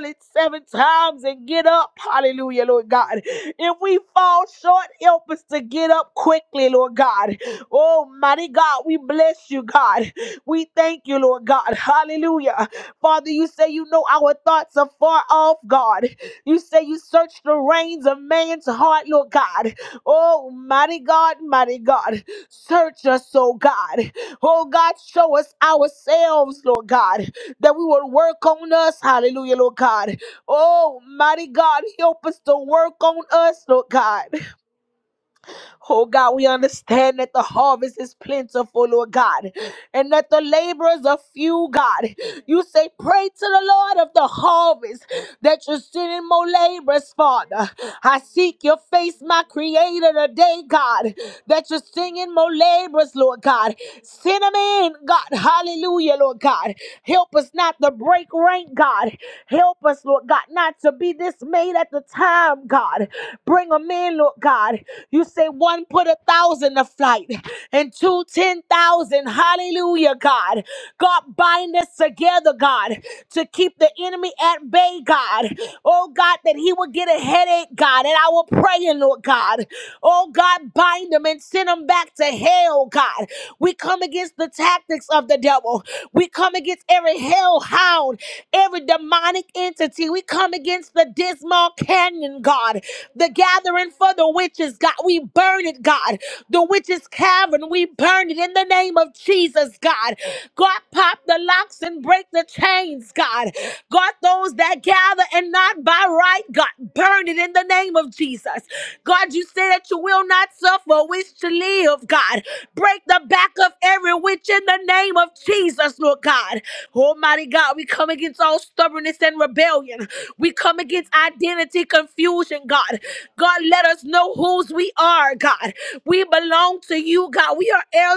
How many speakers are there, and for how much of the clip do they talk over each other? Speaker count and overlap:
1, no overlap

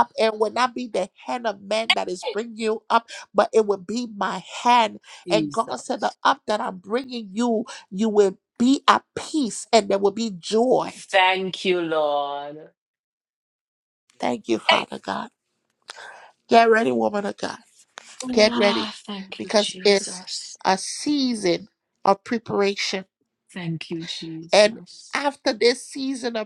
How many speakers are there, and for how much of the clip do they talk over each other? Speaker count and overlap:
2, about 8%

